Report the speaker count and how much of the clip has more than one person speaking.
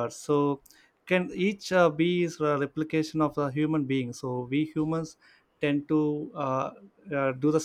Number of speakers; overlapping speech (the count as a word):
one, no overlap